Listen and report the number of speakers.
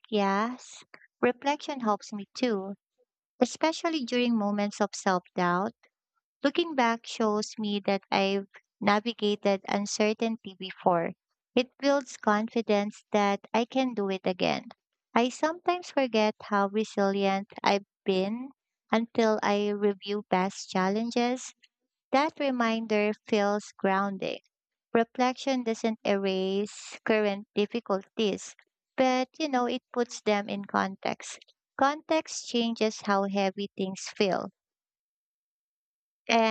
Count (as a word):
one